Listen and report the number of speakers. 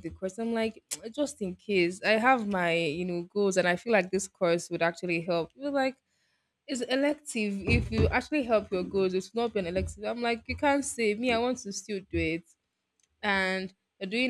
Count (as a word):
one